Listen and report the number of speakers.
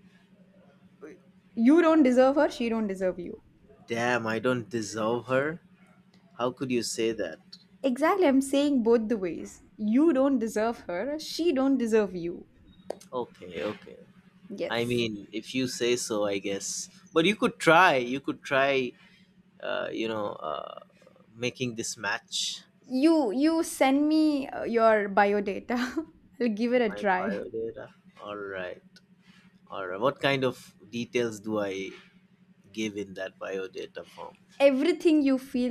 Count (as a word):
two